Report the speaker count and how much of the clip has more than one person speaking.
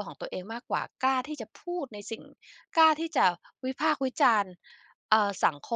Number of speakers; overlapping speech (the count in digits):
1, no overlap